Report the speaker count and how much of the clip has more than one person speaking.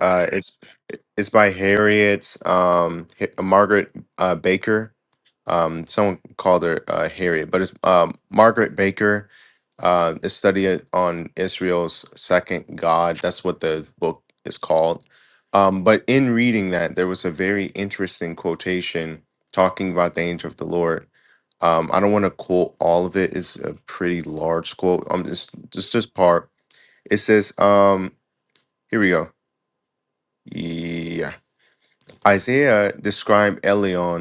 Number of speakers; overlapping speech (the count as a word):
one, no overlap